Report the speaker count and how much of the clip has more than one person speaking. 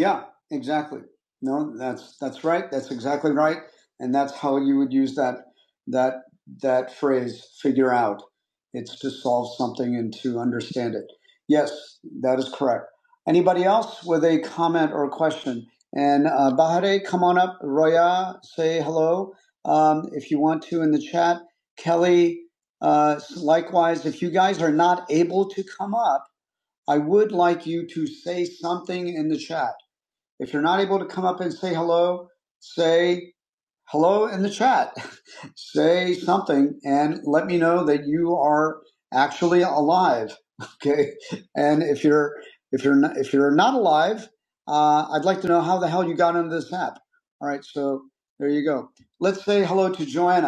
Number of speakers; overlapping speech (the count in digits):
1, no overlap